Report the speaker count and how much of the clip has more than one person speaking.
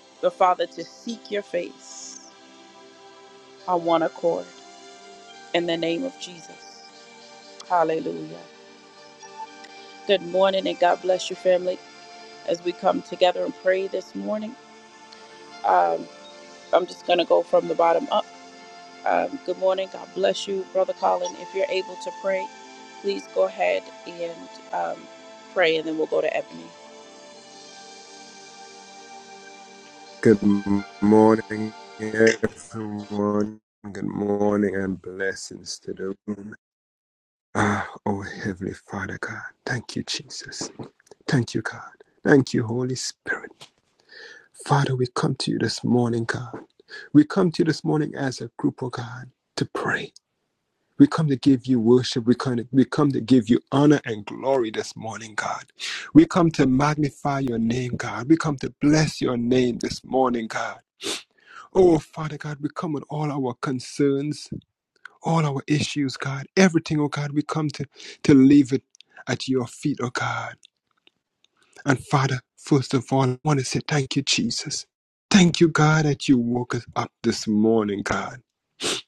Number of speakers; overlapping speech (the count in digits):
2, no overlap